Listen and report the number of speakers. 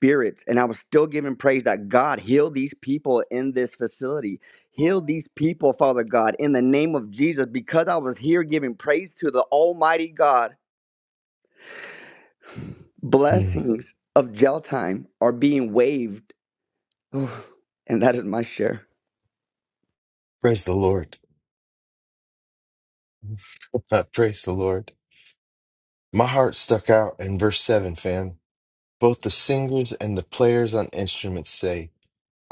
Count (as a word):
two